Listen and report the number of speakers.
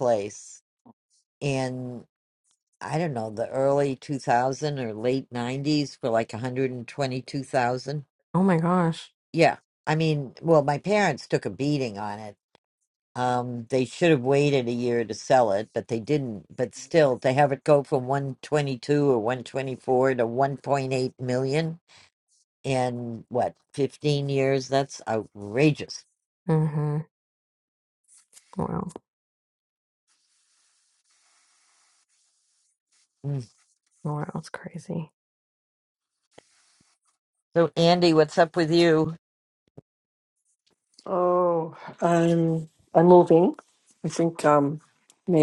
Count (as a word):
three